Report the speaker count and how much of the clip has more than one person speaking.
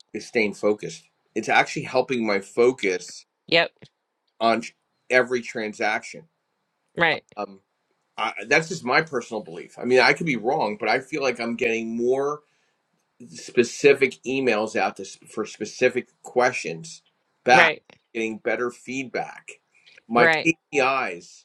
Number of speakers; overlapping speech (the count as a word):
two, about 2%